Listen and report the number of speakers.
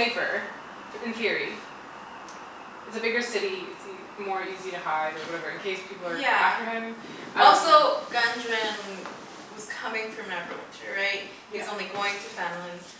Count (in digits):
2